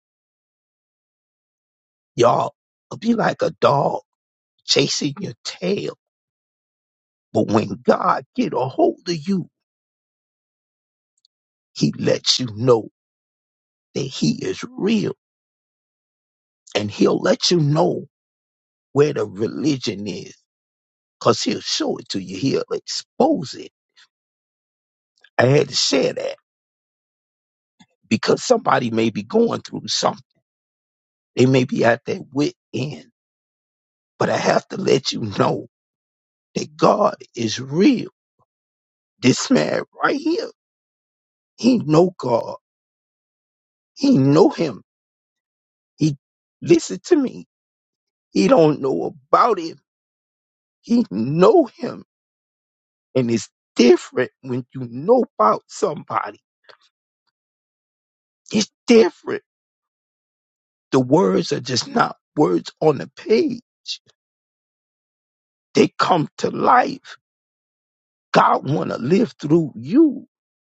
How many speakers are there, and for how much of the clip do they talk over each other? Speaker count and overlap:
1, no overlap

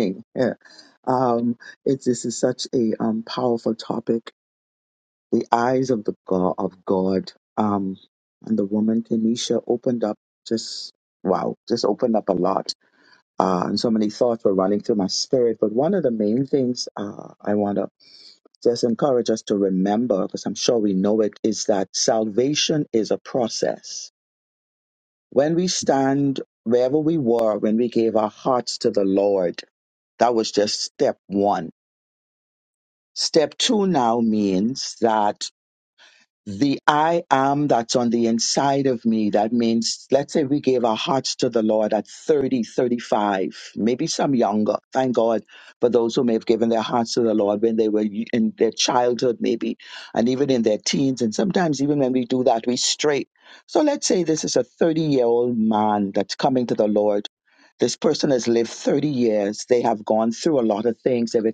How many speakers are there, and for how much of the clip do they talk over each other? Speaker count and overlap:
1, no overlap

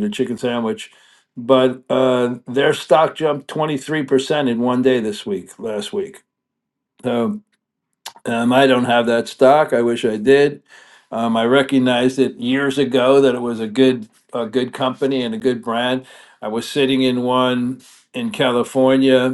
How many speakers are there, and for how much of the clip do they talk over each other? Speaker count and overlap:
1, no overlap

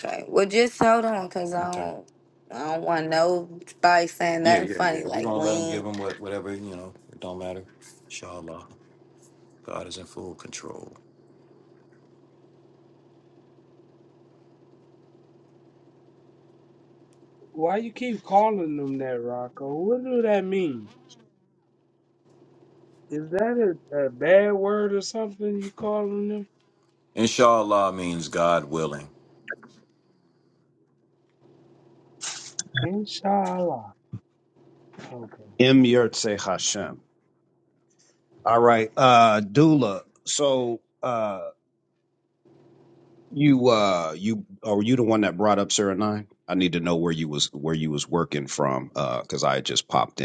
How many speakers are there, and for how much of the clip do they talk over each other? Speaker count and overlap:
4, about 3%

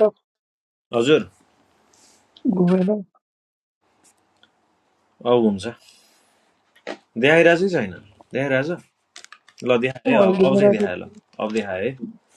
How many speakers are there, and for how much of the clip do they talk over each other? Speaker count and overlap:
2, about 7%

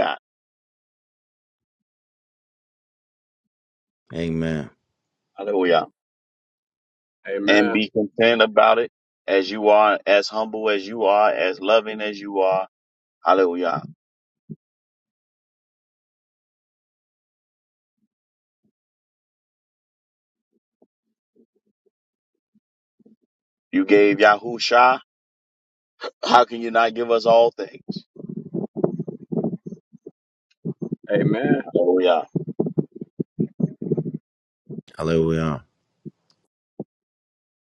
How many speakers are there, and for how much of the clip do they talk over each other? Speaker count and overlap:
3, about 1%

